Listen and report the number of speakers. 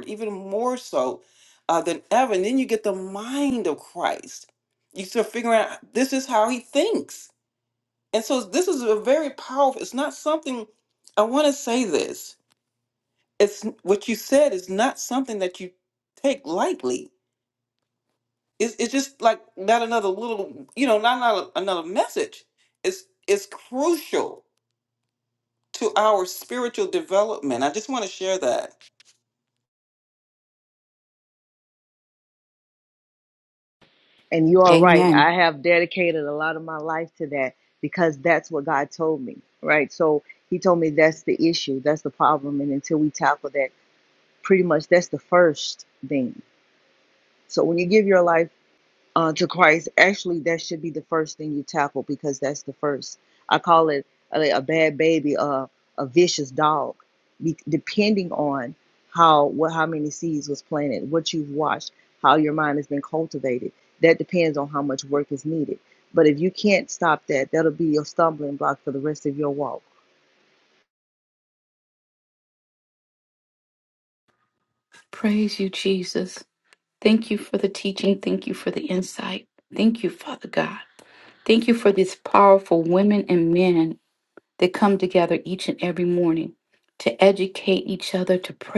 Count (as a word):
three